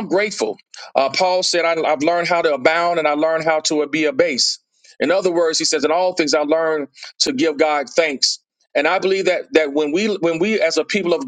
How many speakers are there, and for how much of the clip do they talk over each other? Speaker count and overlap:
1, no overlap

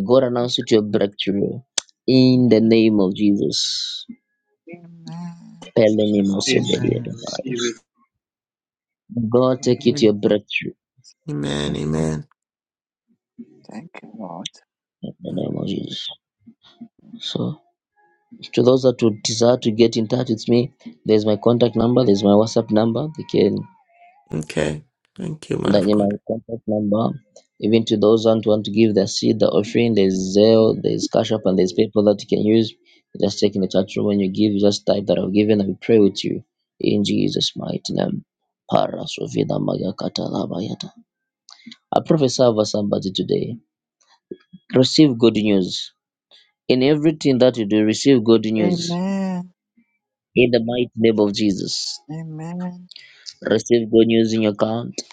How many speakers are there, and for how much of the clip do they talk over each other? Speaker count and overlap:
4, about 5%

